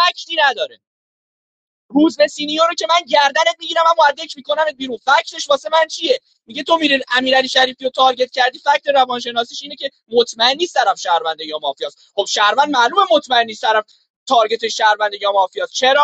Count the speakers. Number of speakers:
one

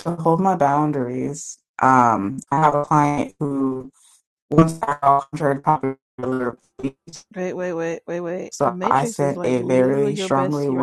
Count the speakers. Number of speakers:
two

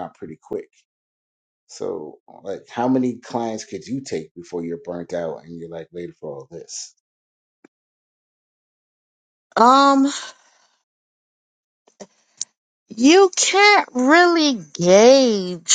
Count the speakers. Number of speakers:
two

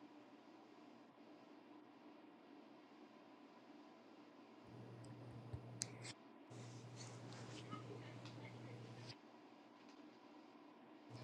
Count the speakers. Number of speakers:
zero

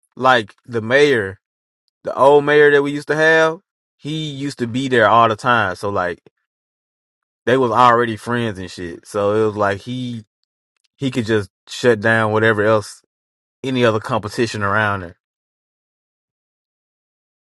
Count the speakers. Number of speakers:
one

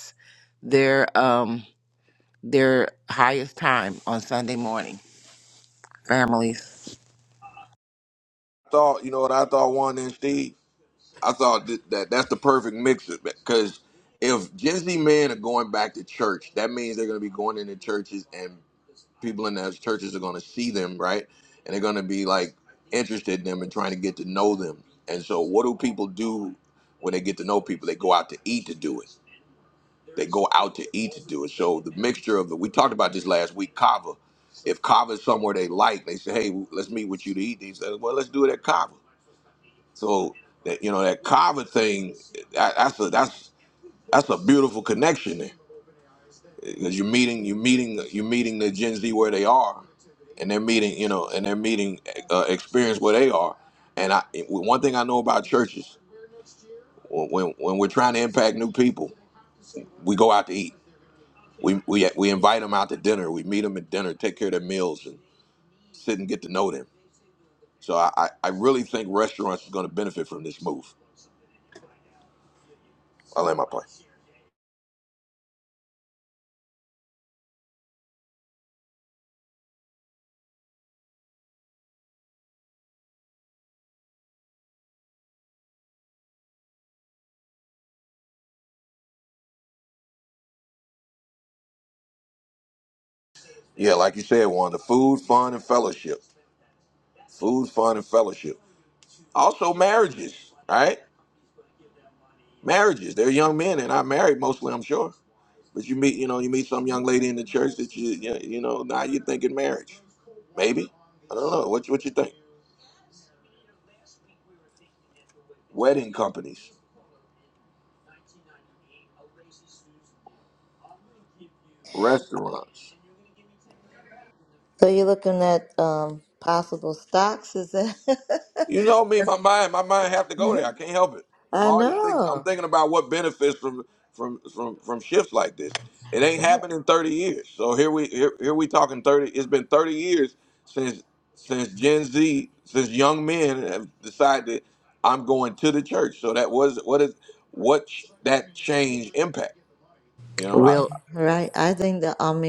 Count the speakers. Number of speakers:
three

